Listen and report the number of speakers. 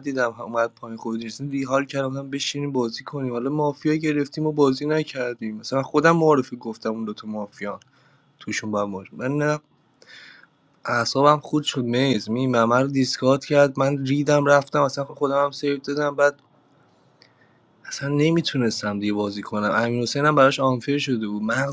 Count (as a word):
one